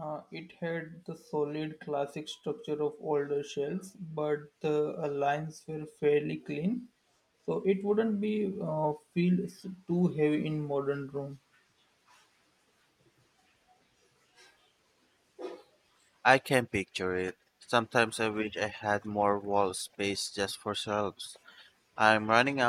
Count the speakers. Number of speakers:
2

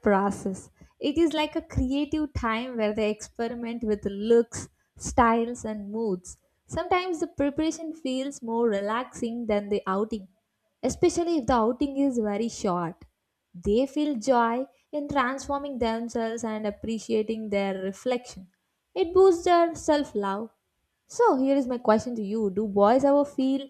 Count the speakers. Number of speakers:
1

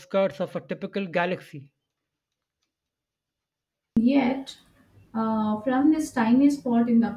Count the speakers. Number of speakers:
2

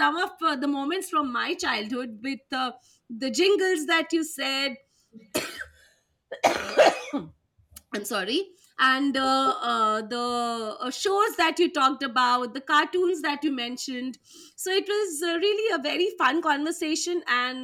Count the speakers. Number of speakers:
1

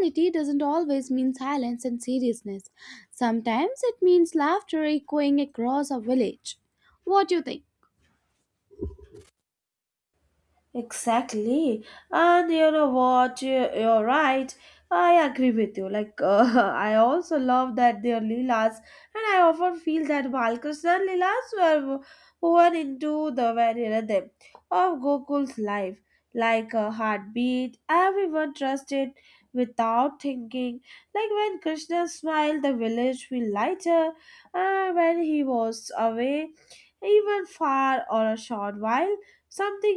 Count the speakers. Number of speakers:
2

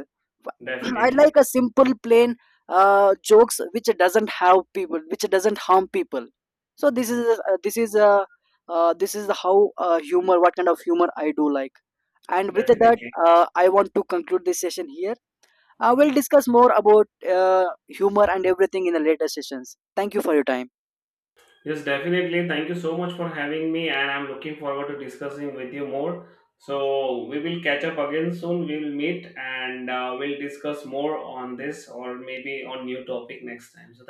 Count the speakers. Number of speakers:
2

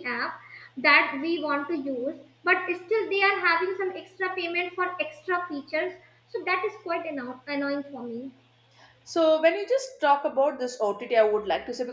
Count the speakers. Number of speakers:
2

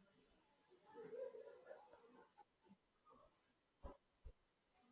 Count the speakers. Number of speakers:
0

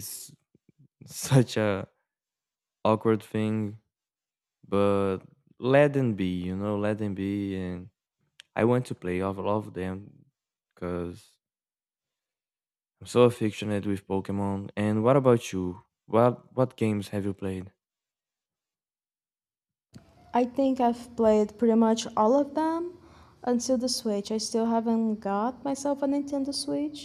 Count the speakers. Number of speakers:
2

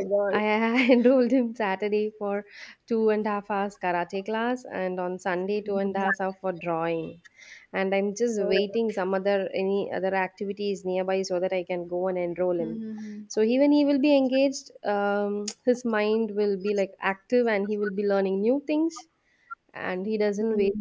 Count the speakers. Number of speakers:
2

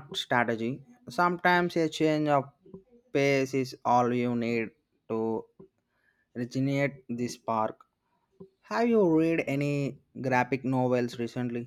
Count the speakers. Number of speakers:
1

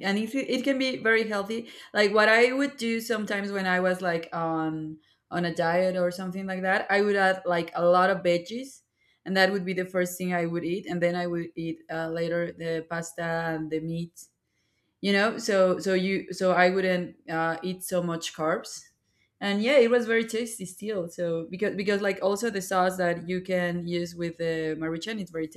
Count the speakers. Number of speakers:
1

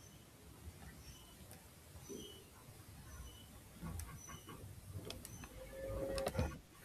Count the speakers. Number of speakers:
0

